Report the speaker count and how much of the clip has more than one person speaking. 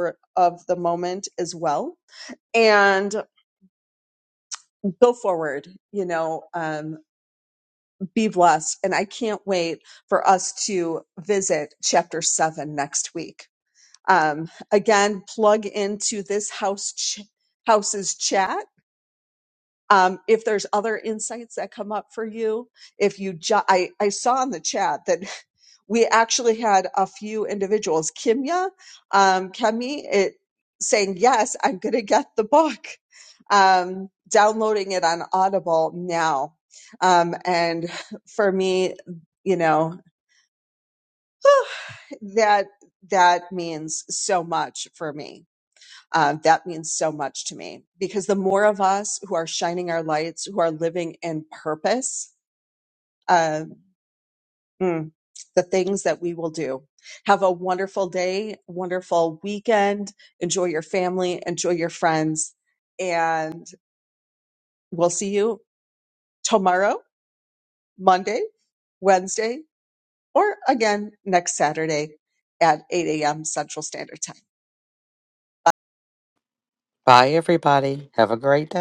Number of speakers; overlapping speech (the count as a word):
two, no overlap